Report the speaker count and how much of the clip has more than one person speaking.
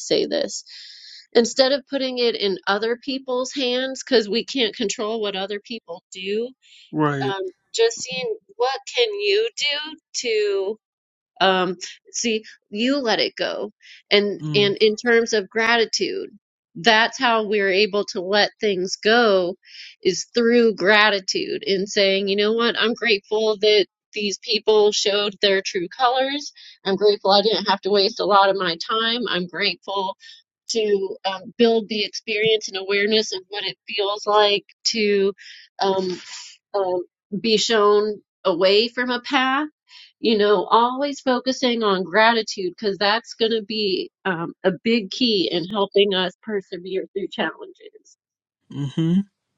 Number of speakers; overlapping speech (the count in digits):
2, about 1%